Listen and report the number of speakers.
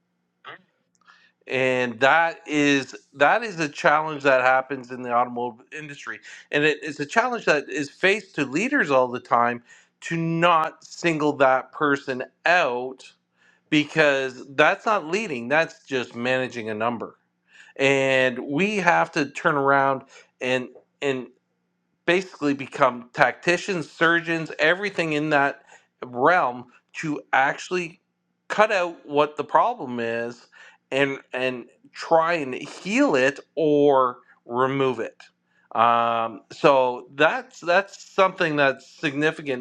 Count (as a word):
one